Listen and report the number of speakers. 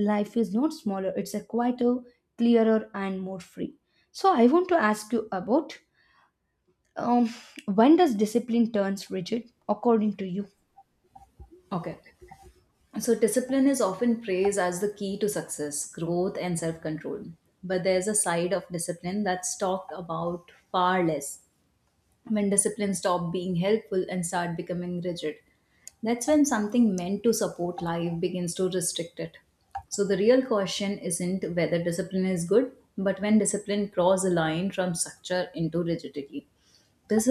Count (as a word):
two